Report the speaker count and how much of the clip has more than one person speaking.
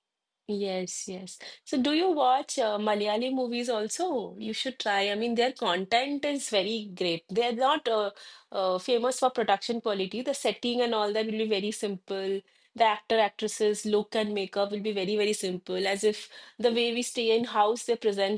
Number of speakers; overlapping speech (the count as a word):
one, no overlap